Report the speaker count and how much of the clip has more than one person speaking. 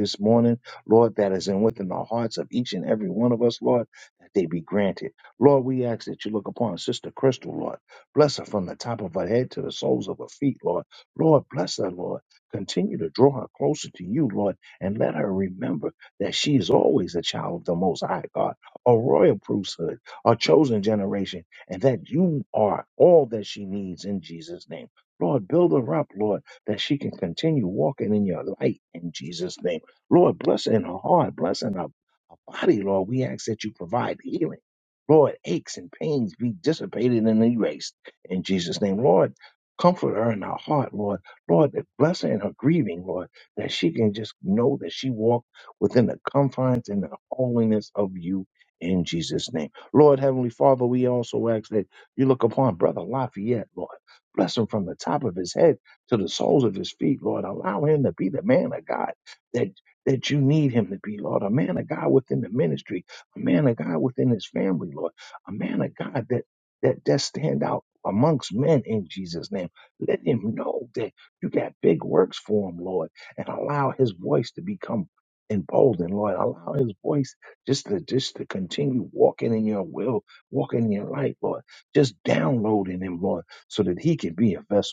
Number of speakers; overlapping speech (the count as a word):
one, no overlap